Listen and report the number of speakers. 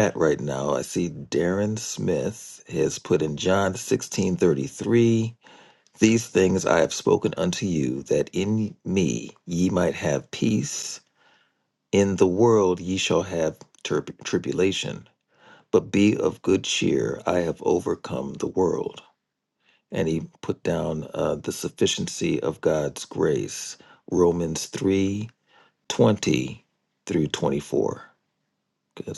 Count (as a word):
one